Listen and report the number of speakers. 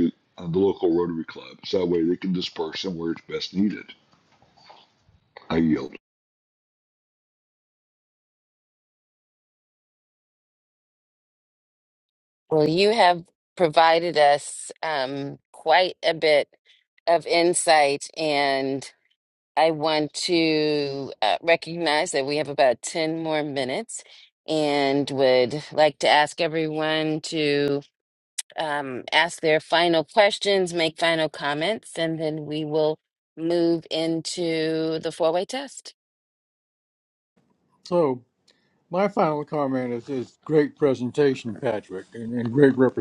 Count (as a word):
three